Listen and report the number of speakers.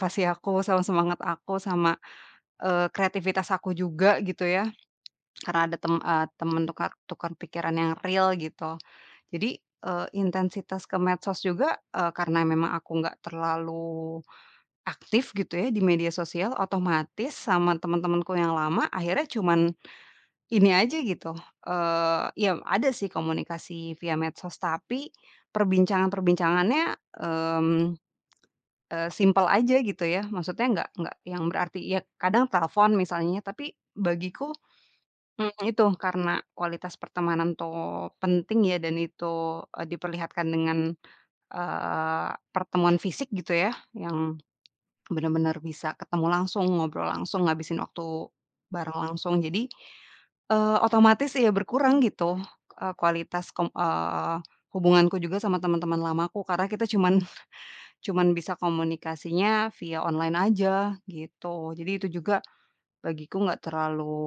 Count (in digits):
1